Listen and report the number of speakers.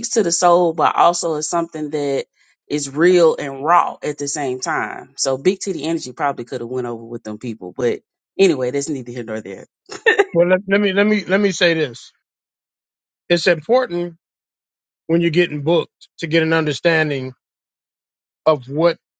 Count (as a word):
two